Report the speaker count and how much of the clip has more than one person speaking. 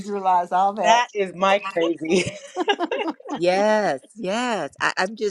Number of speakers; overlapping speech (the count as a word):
three, about 7%